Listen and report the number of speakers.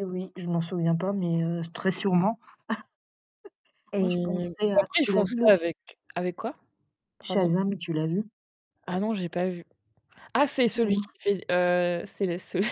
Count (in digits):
2